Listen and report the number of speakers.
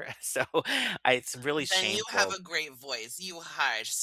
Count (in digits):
2